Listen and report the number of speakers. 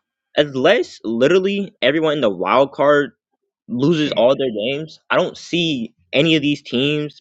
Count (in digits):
1